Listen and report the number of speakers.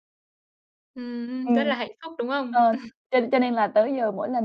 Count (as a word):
two